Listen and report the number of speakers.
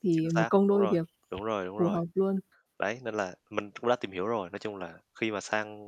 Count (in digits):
2